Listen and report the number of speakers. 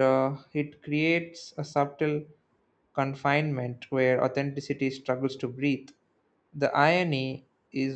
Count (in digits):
1